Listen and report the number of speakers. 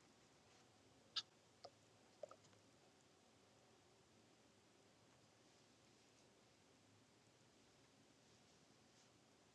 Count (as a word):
zero